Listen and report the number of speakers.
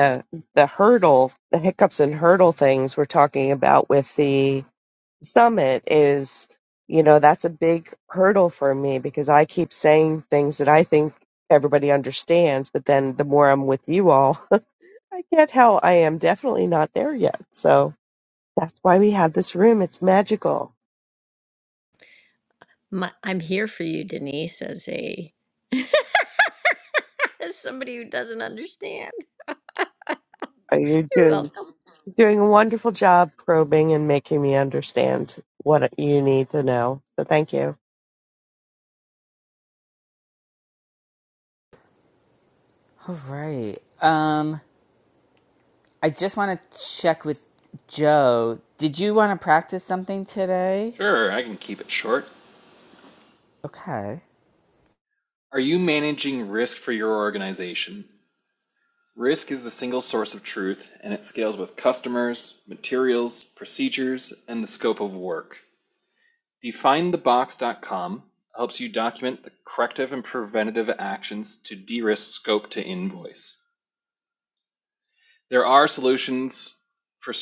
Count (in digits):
4